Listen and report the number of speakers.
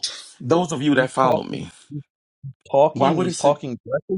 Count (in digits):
2